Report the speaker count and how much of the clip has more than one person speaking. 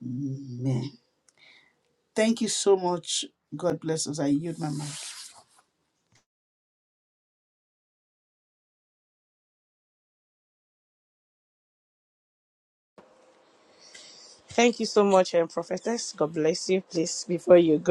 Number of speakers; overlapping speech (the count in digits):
2, no overlap